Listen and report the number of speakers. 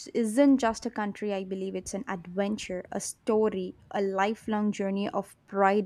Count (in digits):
1